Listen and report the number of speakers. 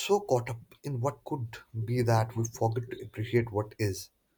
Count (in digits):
1